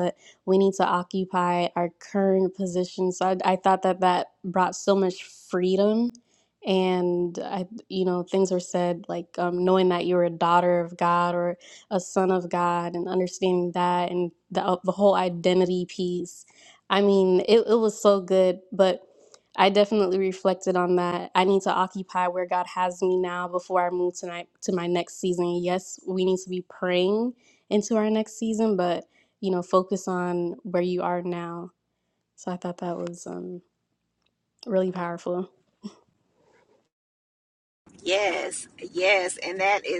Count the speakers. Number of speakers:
2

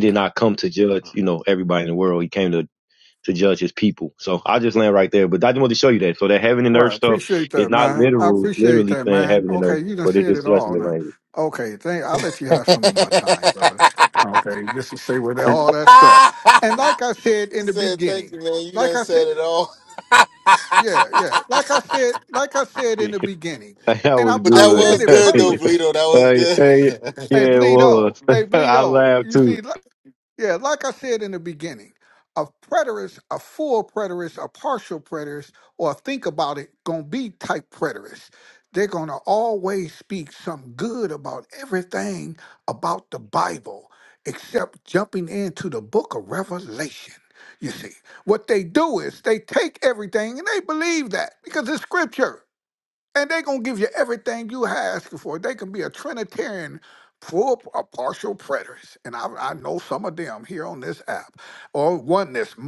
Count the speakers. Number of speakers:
3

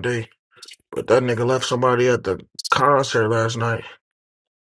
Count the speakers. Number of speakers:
1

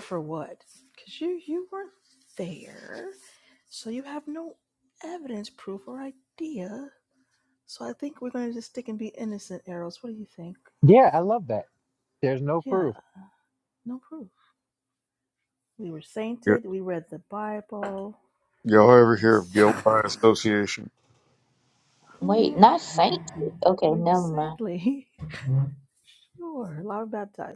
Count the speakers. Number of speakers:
4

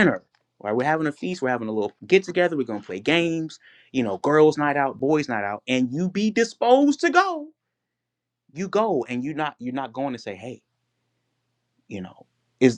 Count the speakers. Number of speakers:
1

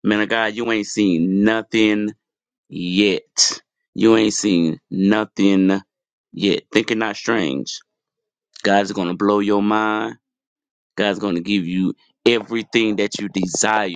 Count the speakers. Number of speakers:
1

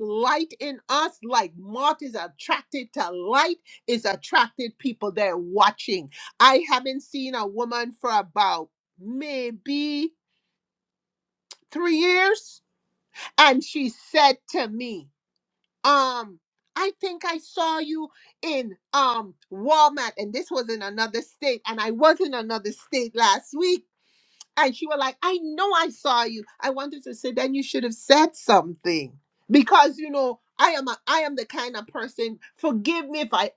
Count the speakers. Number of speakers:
1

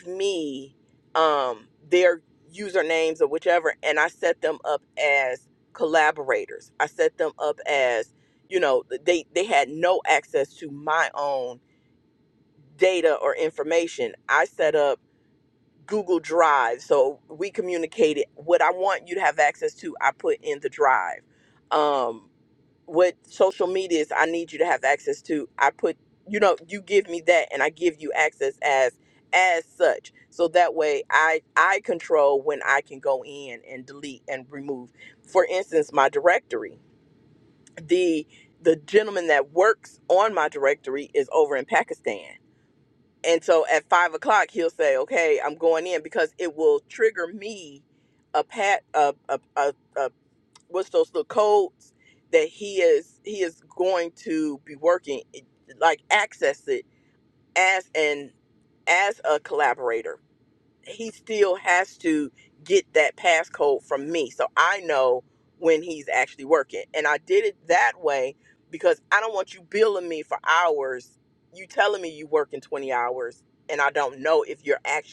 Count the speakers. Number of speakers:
1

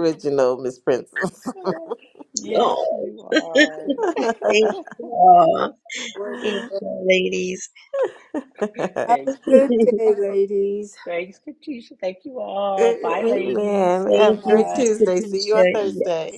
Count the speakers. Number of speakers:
4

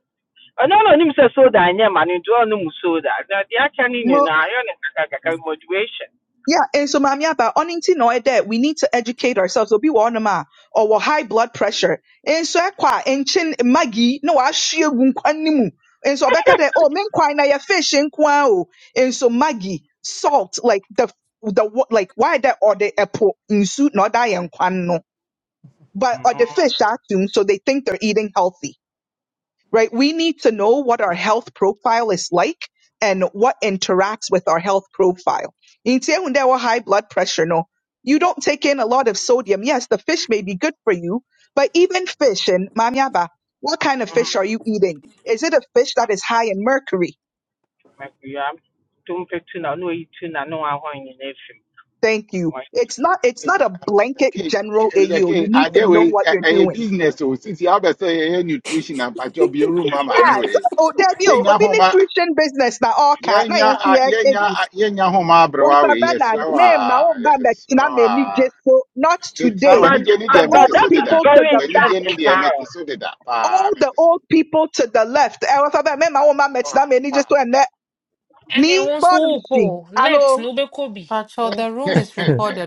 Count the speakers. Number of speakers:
5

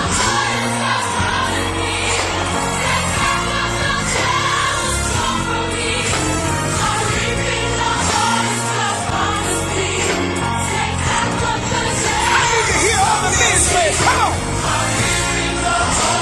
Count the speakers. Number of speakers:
0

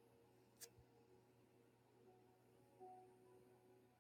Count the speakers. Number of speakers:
0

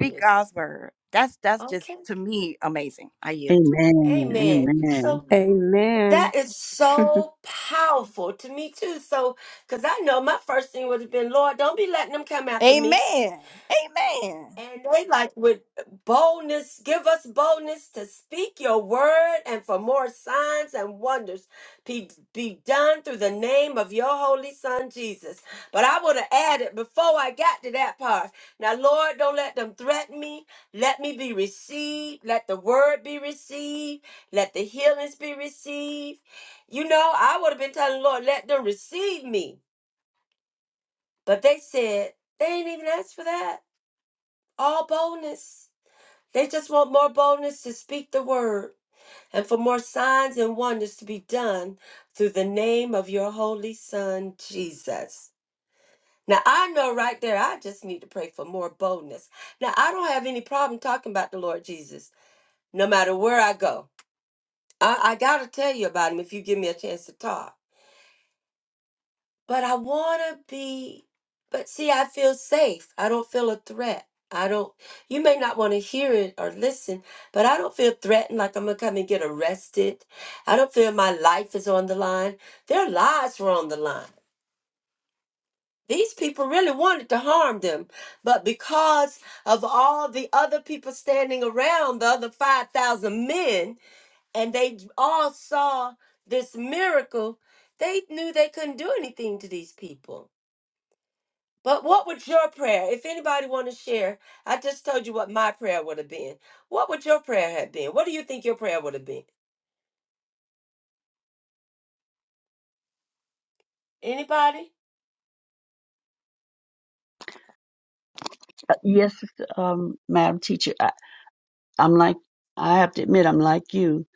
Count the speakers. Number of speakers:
4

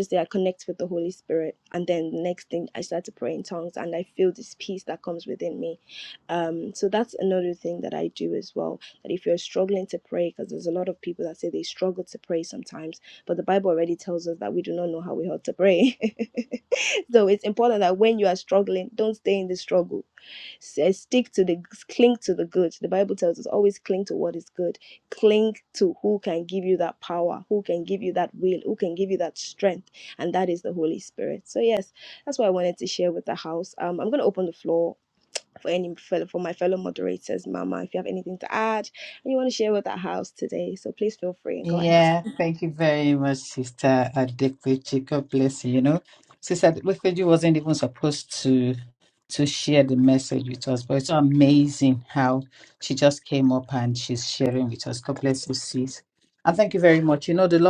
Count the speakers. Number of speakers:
2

